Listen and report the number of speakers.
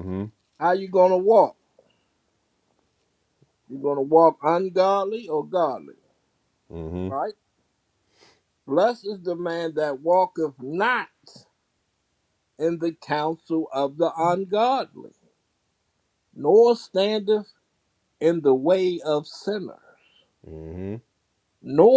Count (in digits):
2